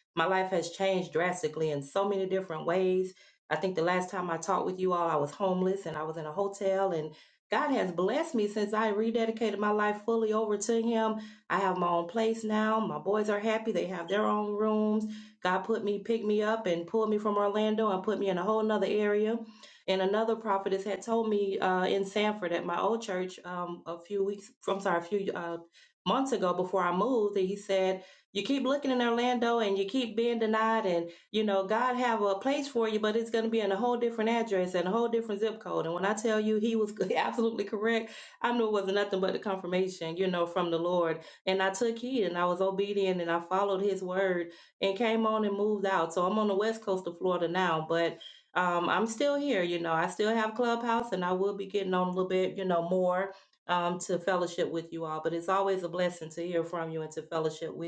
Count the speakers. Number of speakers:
1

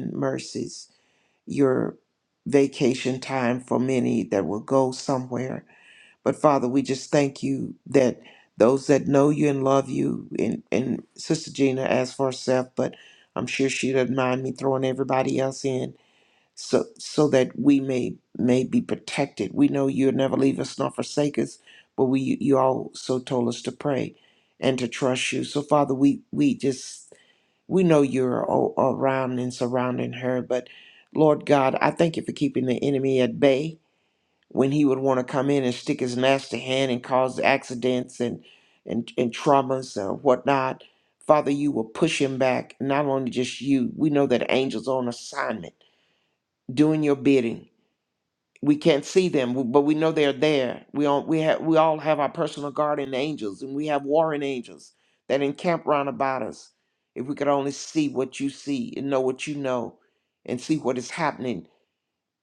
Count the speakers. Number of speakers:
1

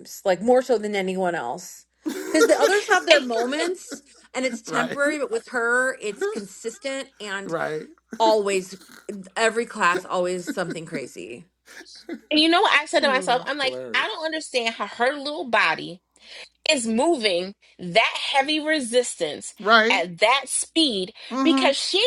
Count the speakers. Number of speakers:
3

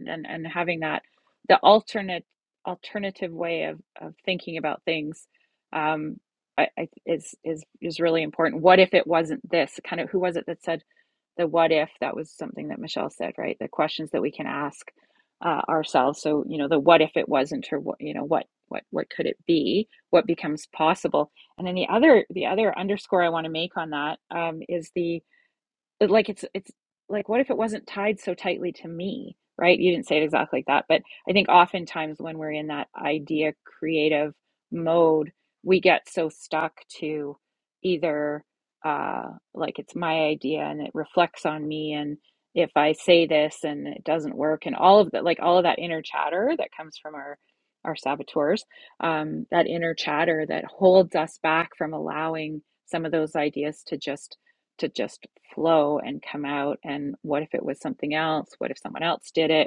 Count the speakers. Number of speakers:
1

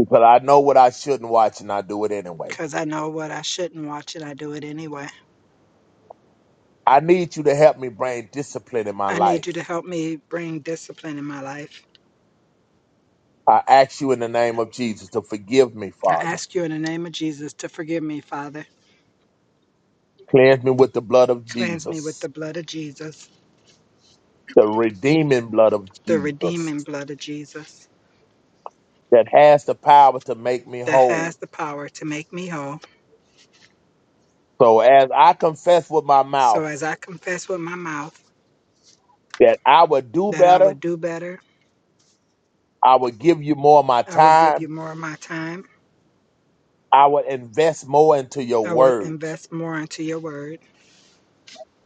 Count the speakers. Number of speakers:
2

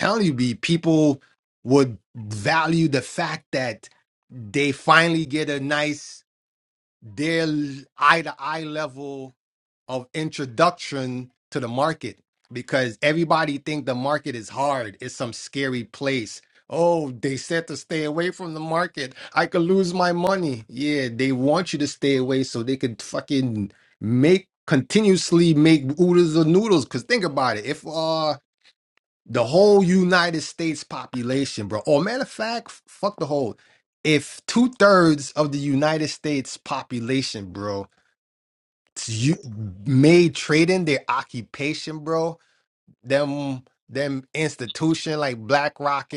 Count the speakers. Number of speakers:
1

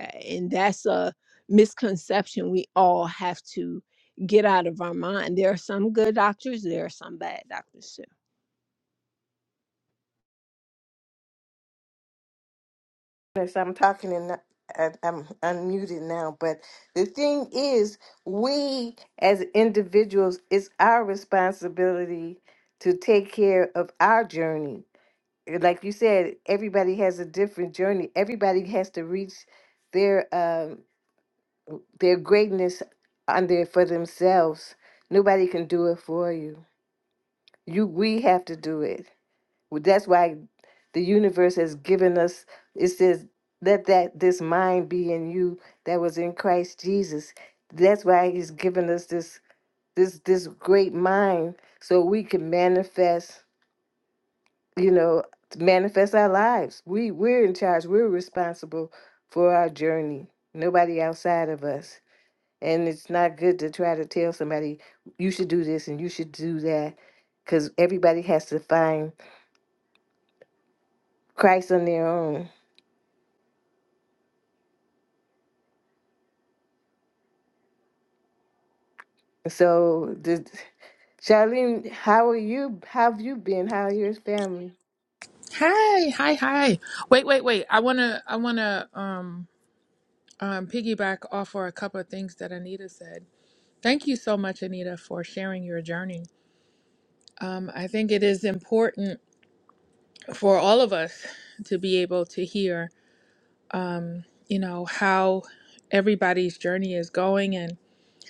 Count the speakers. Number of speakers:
3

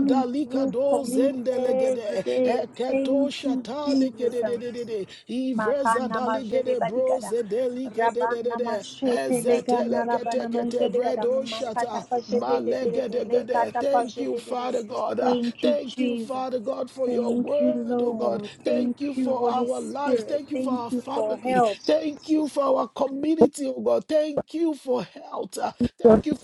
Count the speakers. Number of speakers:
2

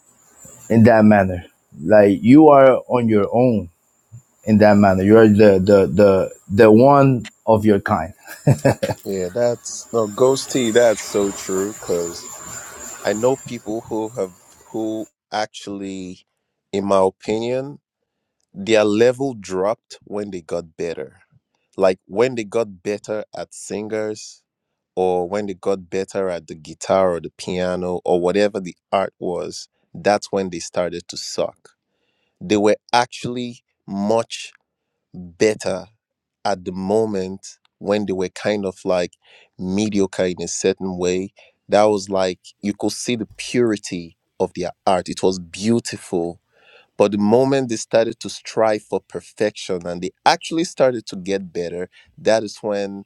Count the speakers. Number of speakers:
2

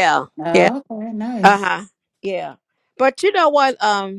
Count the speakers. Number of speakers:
2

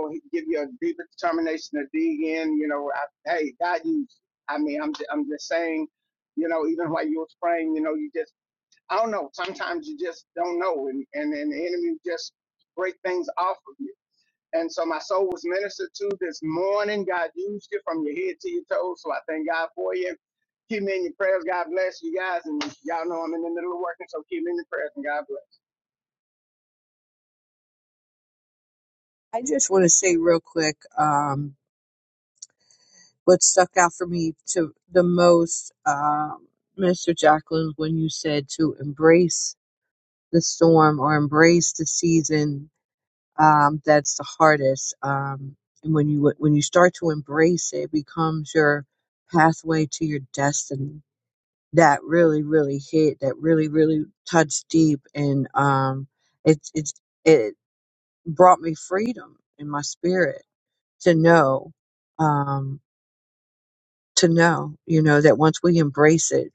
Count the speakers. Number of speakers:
2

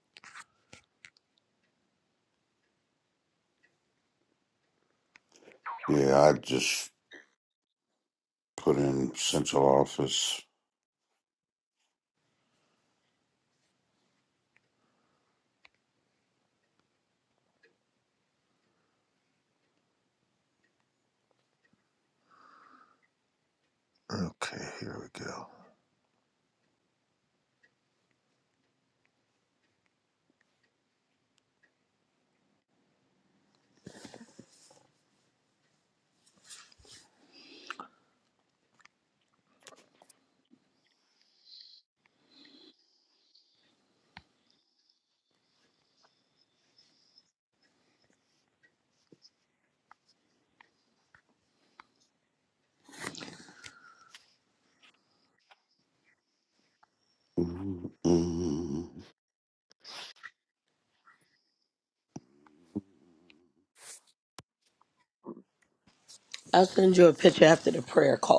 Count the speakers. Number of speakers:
3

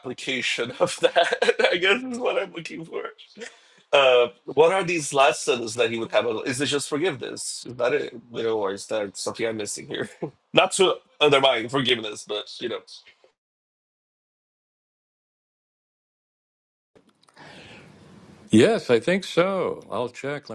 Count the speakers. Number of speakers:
2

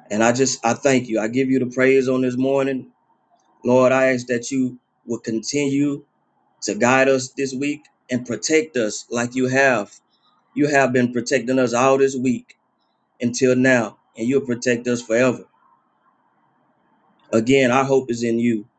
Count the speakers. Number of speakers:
1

